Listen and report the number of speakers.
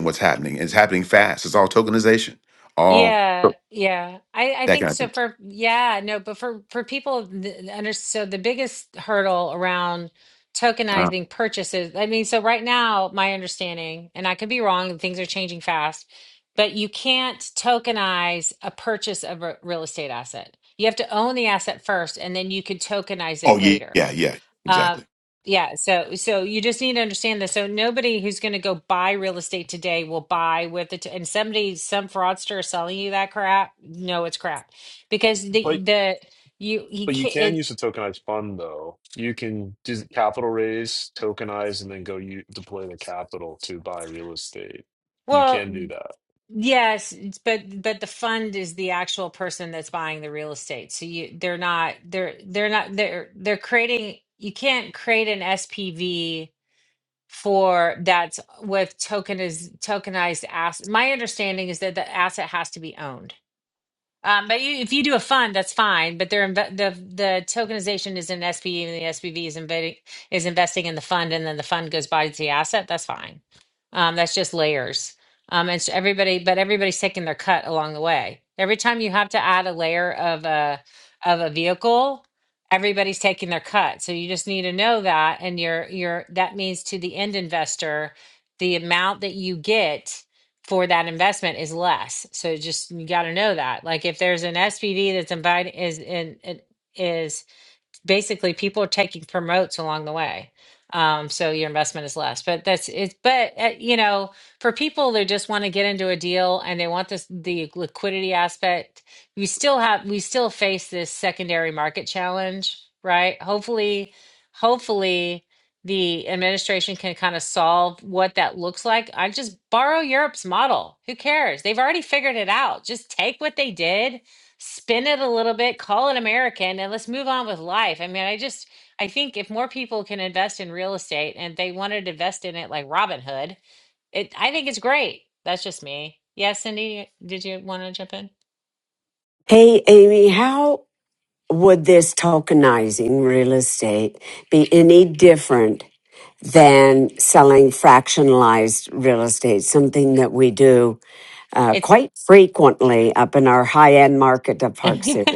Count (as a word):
four